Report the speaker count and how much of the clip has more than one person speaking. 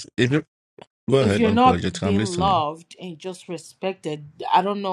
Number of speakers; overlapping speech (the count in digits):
2, about 28%